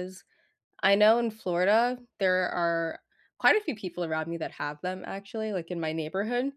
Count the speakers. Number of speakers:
1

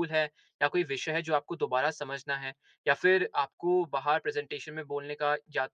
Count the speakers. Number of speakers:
1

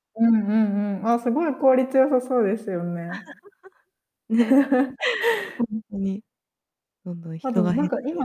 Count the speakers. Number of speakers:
2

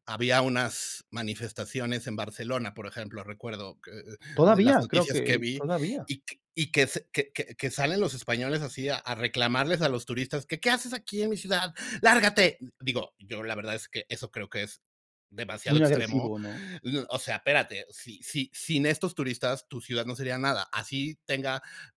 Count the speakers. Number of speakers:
2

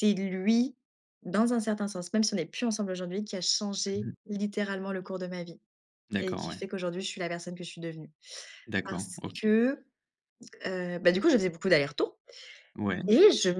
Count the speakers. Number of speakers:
2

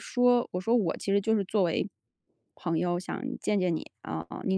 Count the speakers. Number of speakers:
1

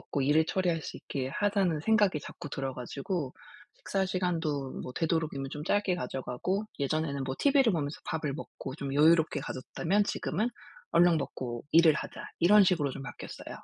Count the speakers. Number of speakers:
1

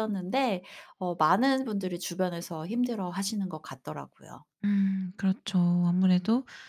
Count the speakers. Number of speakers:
2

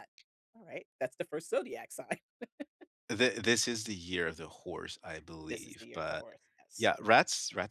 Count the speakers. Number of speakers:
2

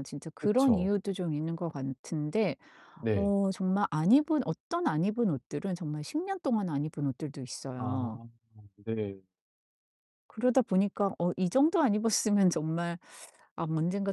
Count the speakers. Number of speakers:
2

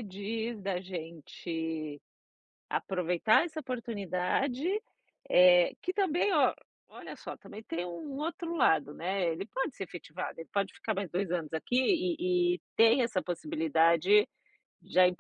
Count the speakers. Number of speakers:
1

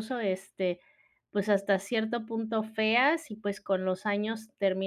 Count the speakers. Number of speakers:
1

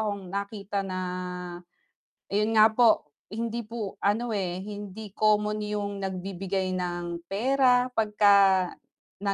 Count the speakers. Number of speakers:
1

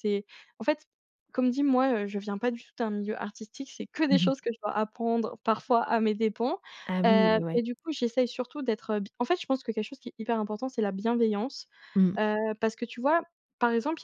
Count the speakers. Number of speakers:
2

